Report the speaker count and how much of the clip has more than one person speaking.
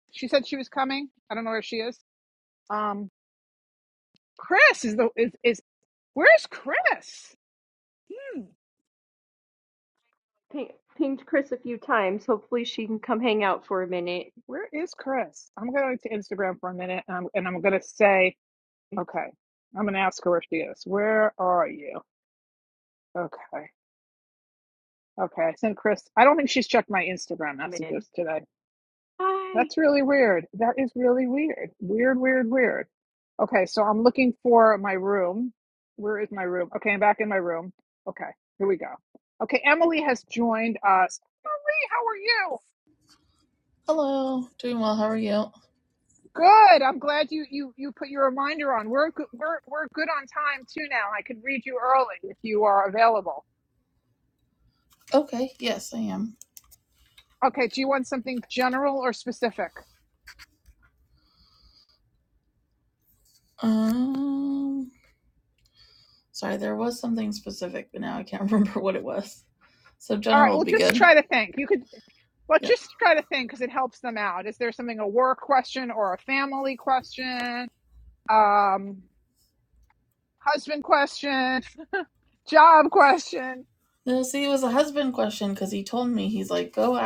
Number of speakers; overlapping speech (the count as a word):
three, about 2%